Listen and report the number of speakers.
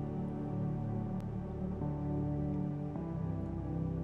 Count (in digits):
0